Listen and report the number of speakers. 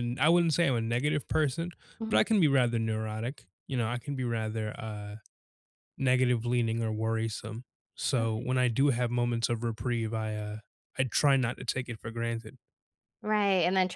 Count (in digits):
2